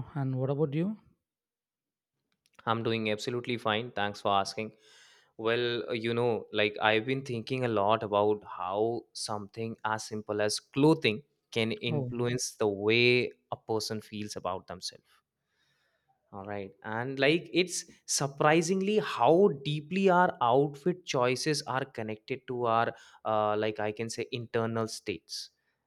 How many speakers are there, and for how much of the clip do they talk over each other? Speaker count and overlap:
two, about 1%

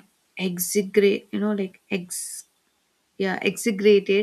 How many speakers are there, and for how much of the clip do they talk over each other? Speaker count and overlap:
one, no overlap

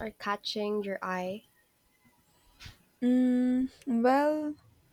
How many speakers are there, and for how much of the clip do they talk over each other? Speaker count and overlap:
two, no overlap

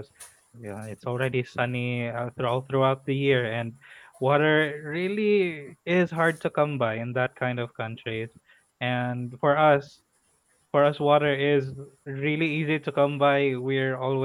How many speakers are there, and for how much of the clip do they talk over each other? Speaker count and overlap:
one, no overlap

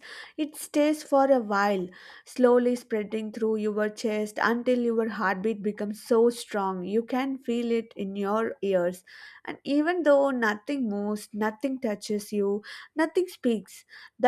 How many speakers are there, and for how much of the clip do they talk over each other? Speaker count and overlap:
one, no overlap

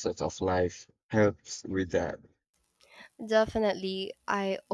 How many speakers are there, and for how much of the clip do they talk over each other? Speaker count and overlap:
two, no overlap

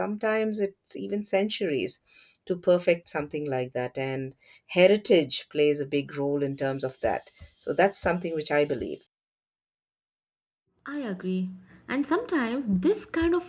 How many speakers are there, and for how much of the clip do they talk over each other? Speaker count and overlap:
two, no overlap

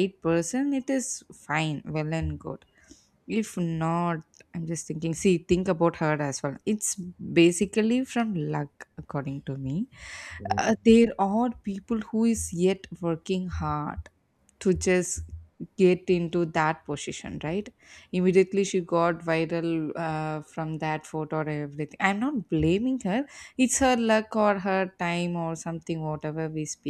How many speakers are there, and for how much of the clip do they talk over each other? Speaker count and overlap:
one, no overlap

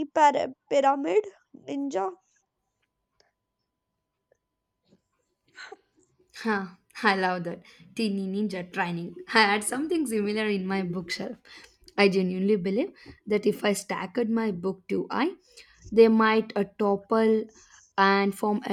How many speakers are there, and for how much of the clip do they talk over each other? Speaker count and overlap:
two, no overlap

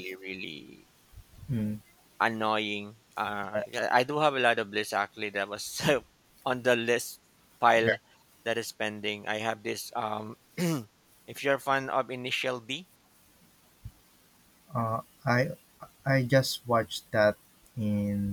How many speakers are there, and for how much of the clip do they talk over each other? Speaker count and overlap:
two, about 1%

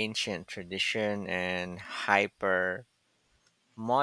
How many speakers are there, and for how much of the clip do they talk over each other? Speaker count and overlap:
one, no overlap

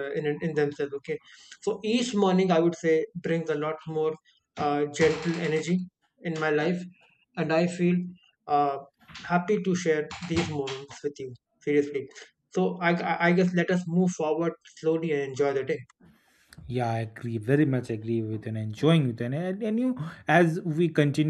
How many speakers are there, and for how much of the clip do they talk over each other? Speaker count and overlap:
two, no overlap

